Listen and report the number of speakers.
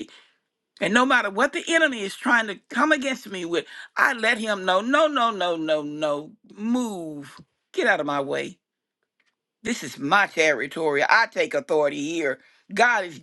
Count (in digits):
1